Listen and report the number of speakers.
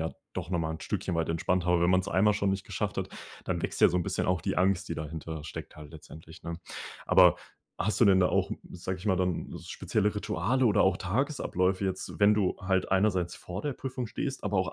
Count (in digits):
1